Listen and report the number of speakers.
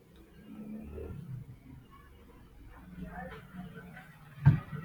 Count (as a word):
zero